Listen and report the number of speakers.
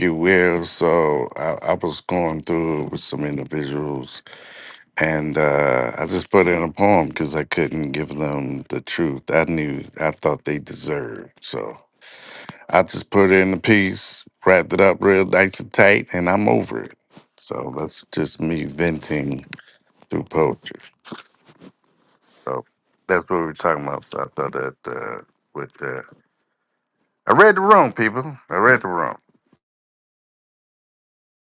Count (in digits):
1